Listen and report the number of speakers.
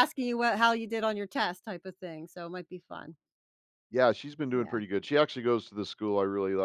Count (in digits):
2